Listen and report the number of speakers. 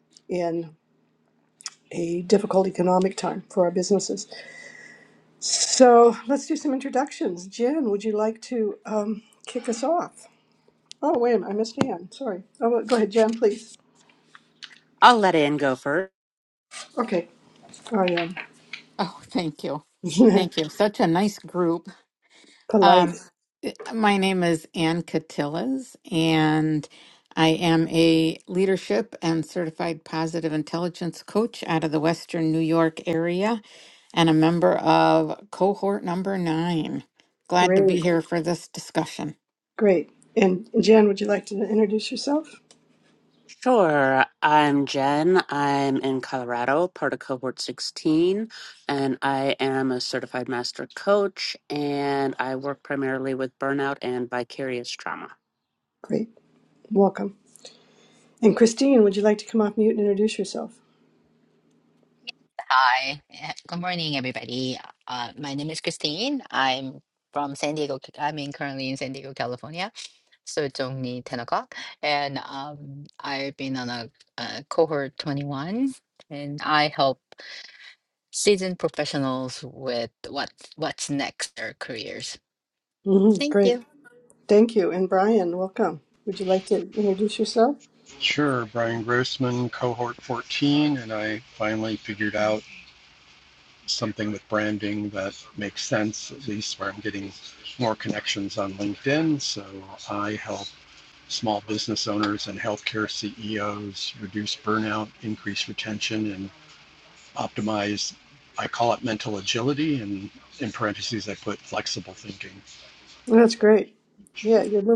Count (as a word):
five